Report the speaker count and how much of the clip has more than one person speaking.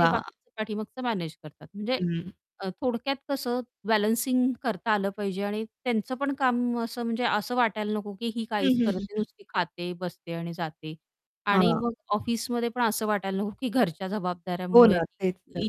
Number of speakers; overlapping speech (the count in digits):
2, about 10%